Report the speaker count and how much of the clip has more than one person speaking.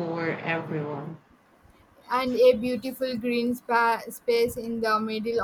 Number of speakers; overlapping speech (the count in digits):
2, no overlap